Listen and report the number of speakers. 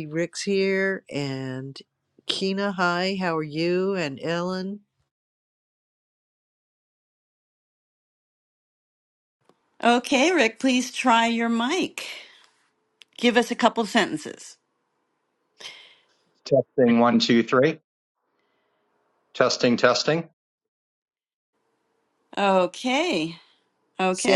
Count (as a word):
three